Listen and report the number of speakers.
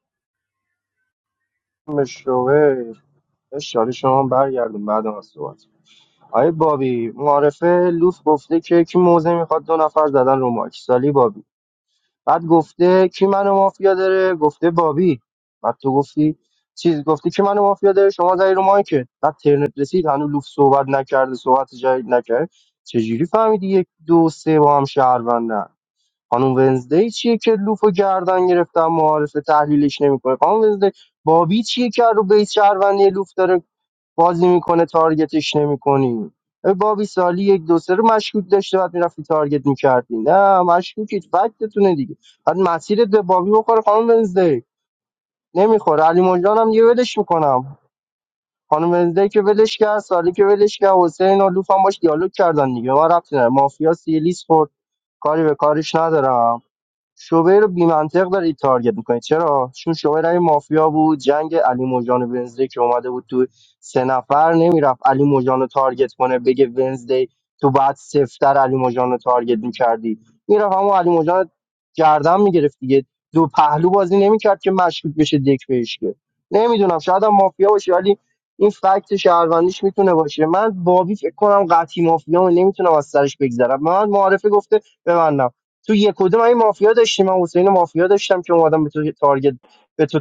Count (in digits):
1